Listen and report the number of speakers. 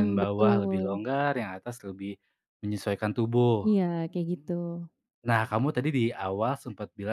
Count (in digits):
2